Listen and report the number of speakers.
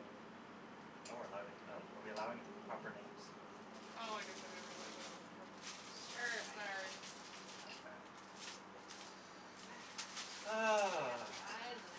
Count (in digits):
3